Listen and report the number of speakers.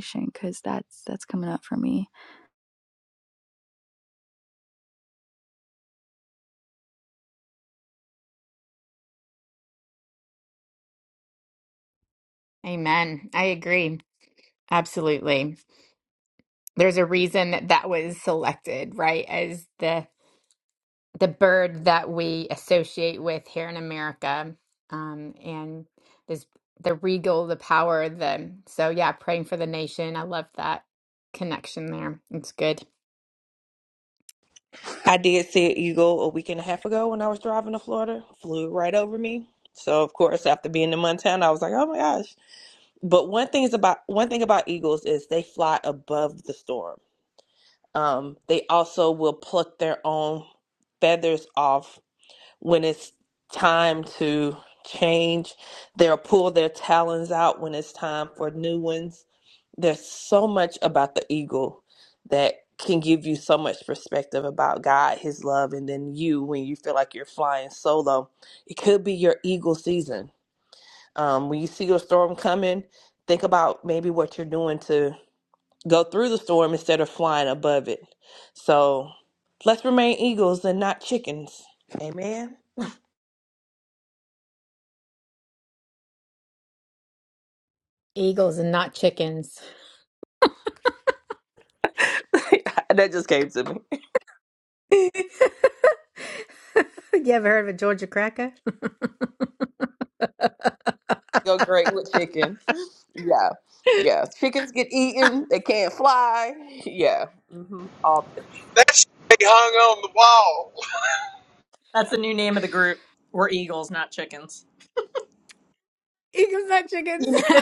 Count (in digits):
5